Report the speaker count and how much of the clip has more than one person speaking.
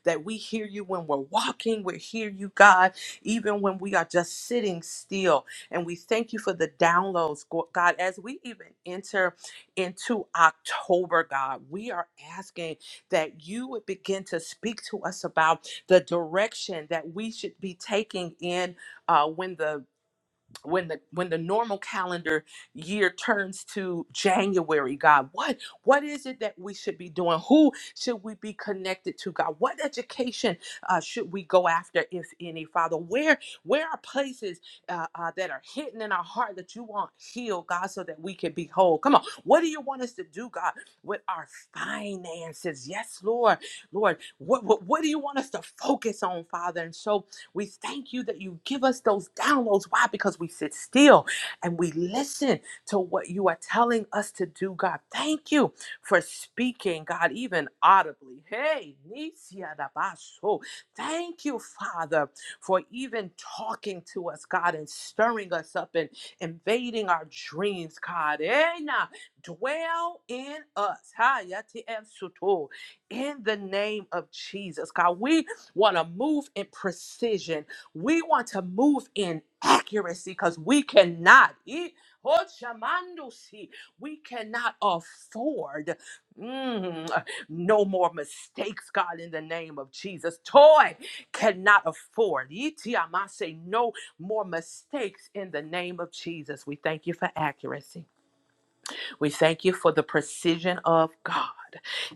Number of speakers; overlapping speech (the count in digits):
1, no overlap